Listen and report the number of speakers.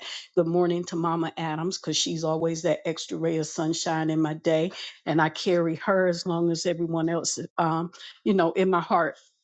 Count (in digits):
1